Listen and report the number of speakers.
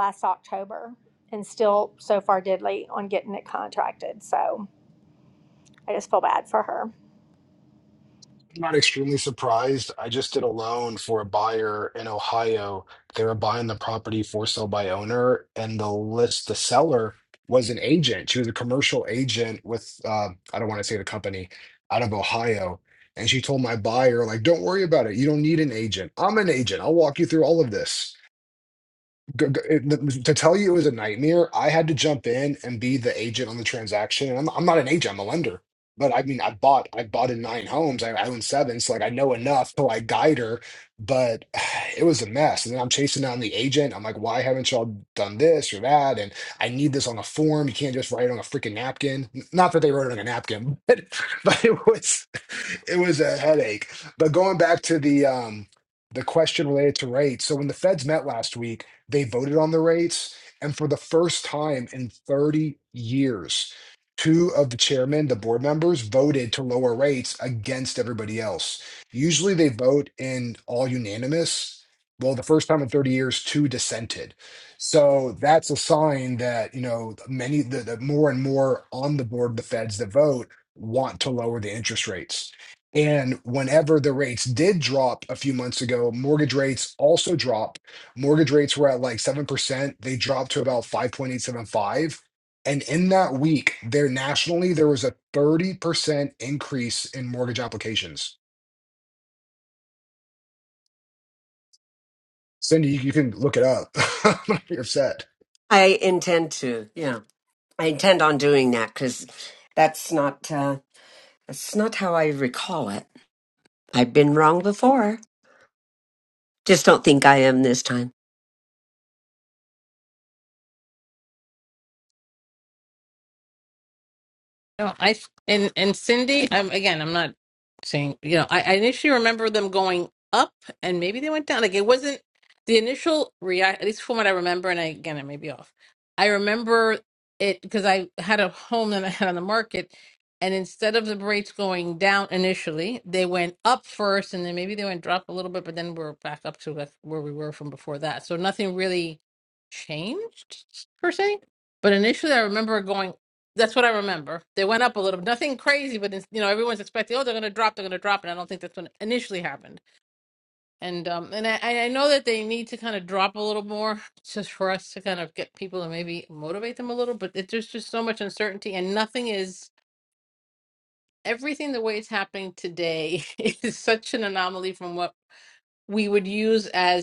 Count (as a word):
four